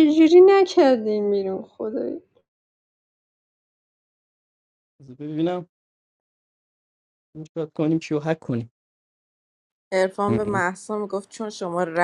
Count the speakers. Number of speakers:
three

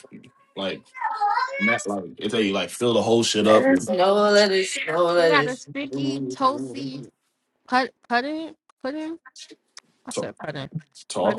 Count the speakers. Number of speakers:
three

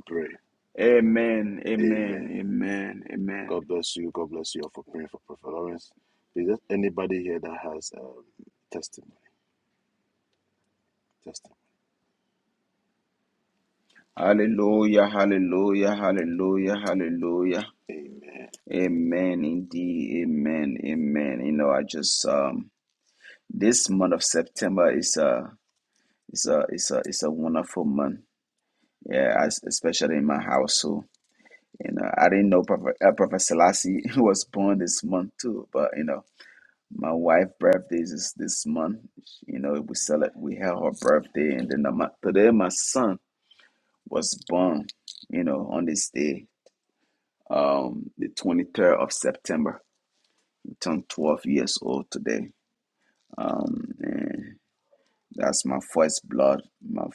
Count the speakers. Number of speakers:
two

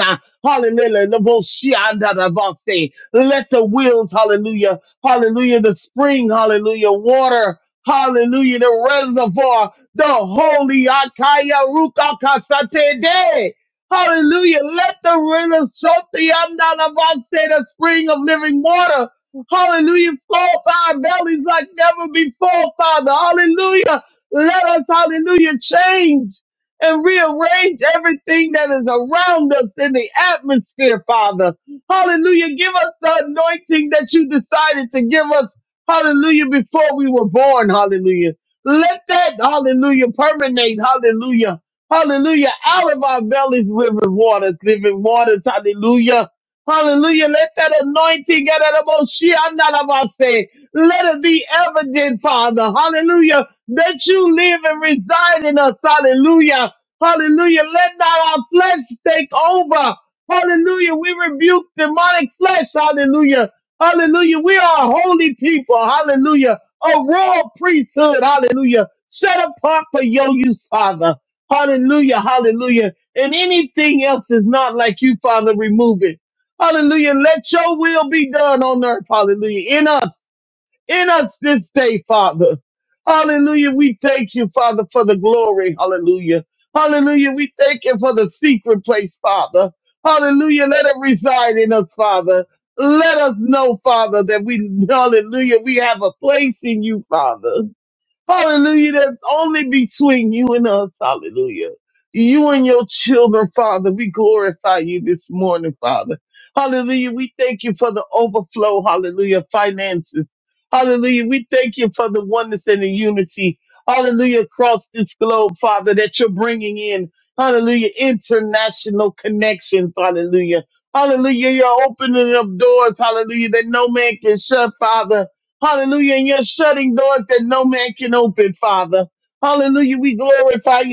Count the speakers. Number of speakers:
one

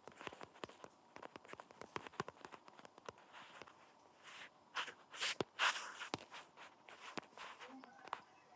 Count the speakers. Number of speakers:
zero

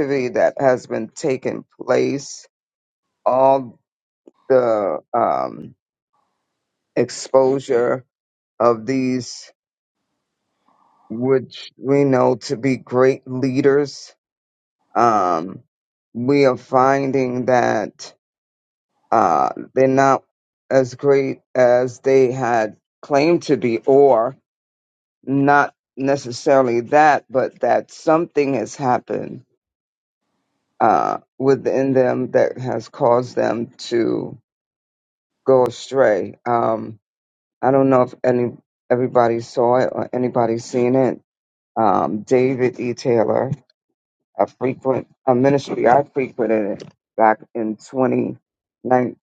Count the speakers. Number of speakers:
one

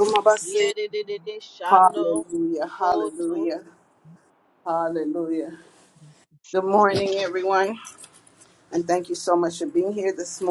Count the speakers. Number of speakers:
two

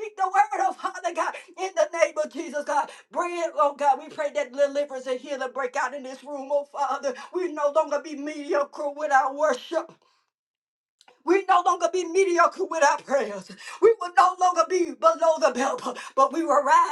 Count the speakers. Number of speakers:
one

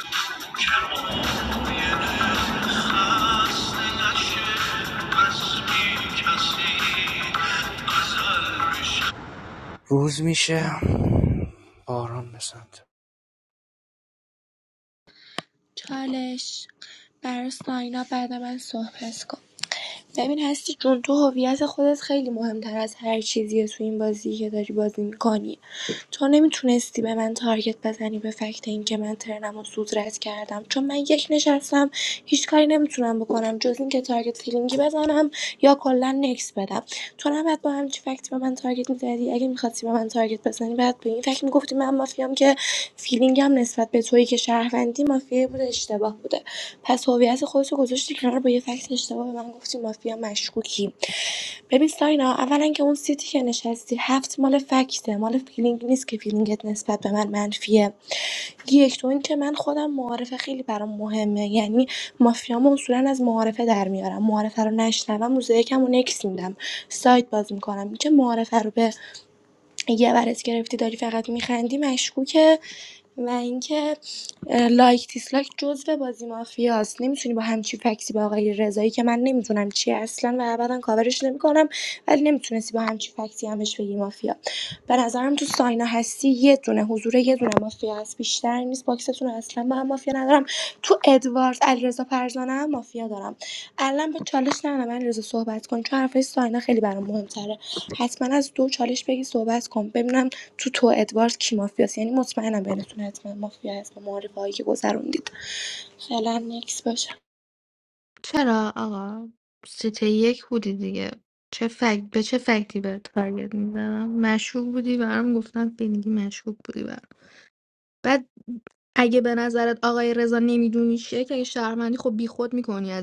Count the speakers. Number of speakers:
four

